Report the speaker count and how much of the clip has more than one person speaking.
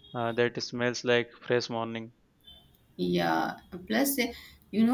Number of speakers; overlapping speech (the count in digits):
2, no overlap